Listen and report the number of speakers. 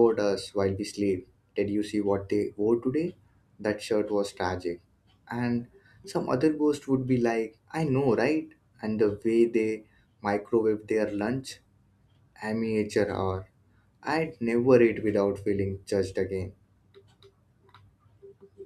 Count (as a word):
one